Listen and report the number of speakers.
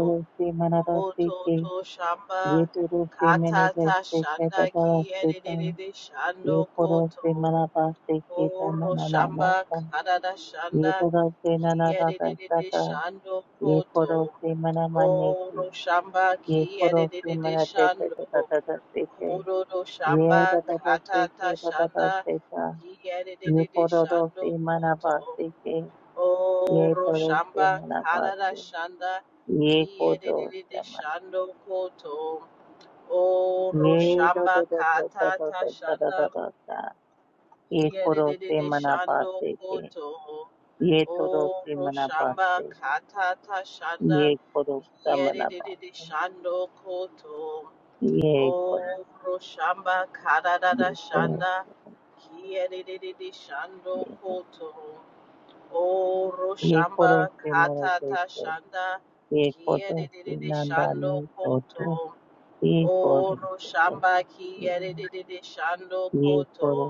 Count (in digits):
2